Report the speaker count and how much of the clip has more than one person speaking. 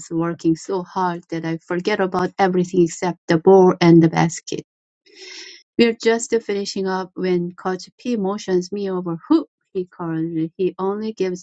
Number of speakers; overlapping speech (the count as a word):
one, no overlap